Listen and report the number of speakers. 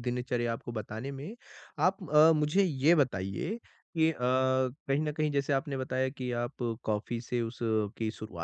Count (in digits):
1